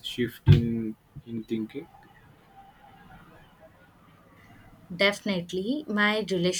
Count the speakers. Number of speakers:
2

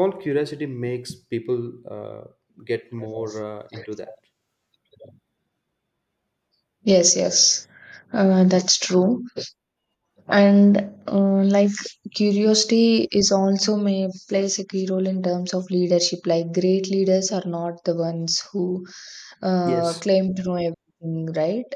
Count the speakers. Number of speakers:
2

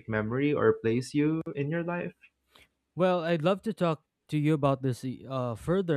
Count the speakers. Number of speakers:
2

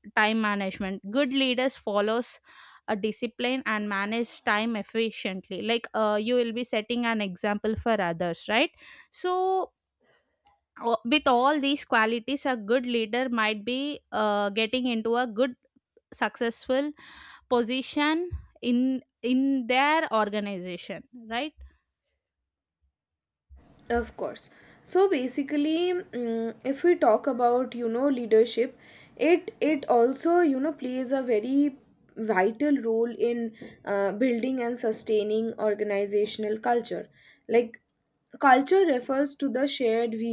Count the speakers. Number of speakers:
2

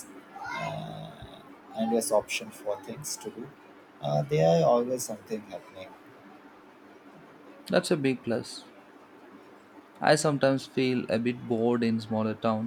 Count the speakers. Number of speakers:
2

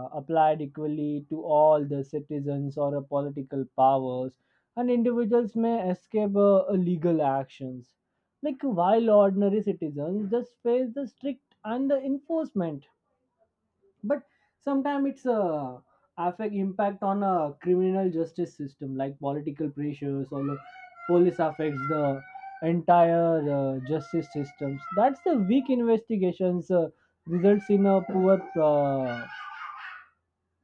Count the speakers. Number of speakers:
1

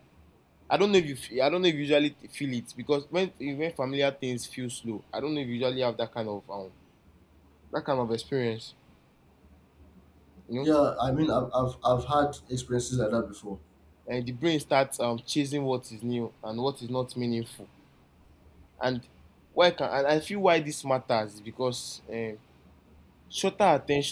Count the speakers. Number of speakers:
2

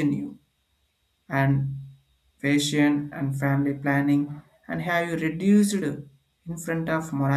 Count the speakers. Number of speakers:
1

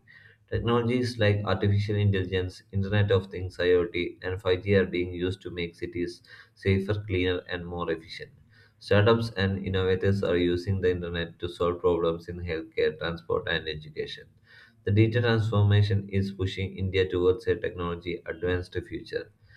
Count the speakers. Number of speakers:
1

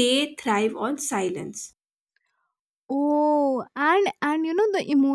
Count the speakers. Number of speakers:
2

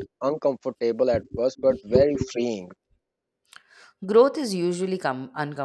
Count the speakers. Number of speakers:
2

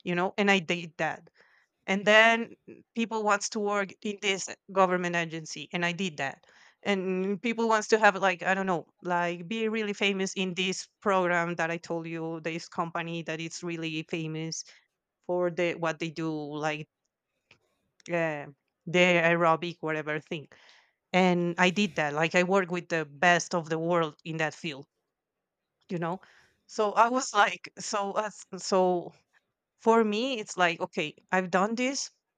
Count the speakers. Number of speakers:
1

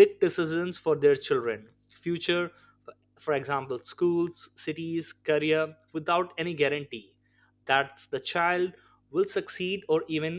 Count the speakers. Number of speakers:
1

